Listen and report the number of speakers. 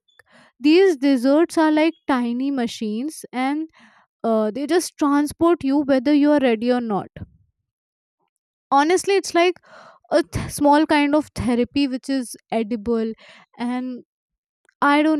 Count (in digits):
1